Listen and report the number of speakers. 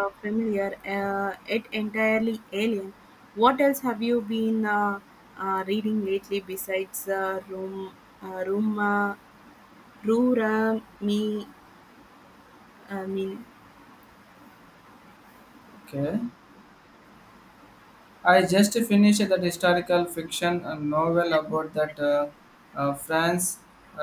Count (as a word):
two